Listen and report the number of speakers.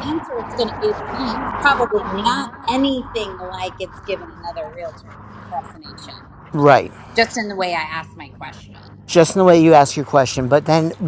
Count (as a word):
two